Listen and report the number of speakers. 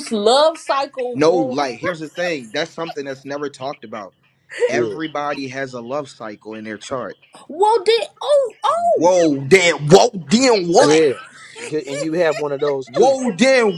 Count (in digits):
3